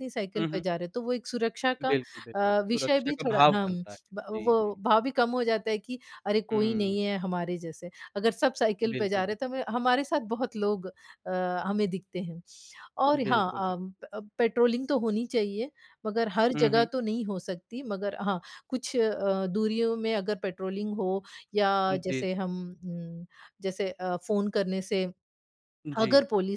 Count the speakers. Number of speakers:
2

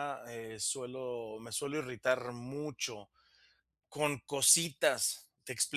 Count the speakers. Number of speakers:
1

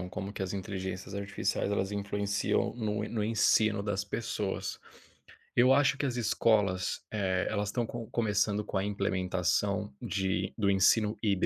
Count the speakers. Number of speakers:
1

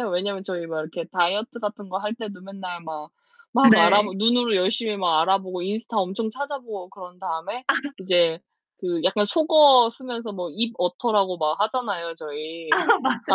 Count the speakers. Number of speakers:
2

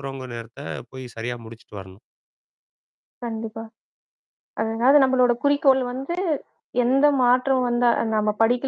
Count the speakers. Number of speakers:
2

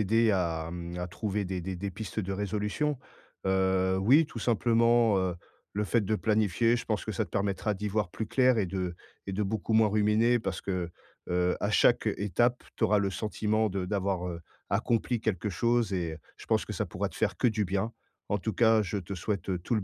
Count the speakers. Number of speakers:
1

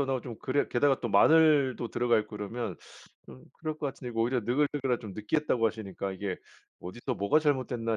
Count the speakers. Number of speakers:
1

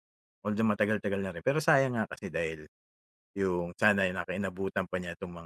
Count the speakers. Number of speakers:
1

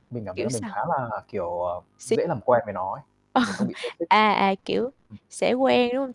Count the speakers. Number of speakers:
2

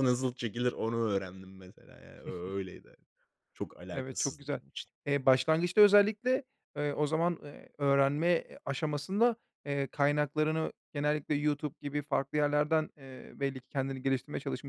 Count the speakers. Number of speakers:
2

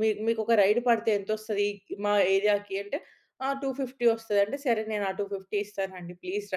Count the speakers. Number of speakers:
1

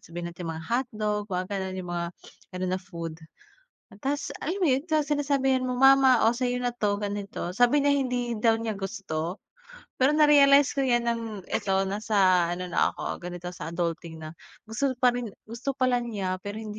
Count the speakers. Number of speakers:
1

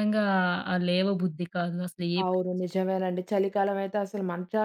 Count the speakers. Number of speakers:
2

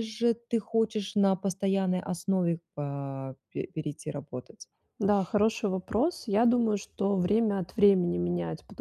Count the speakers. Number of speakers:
2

